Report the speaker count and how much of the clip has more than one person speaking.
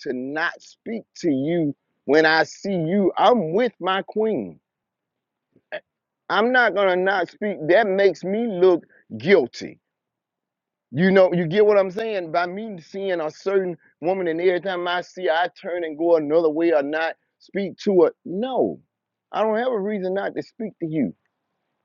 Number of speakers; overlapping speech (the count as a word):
one, no overlap